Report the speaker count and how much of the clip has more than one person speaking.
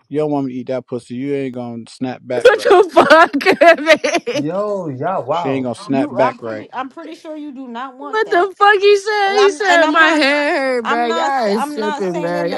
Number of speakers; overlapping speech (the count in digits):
4, about 38%